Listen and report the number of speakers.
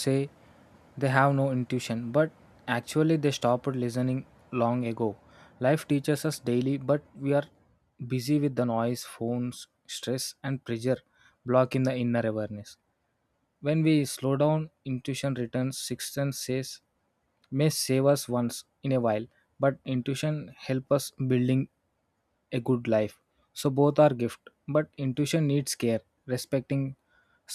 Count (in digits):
1